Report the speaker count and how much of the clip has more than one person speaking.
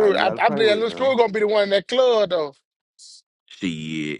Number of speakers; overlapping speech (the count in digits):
2, about 26%